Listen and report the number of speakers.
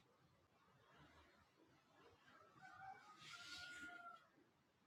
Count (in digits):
0